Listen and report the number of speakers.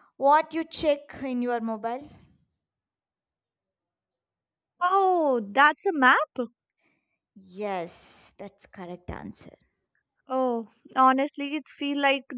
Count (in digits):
2